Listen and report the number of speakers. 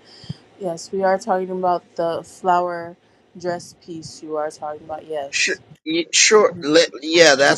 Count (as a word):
two